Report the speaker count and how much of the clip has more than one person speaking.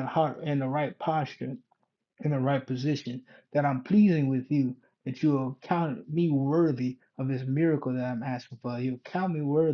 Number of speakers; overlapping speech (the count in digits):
1, no overlap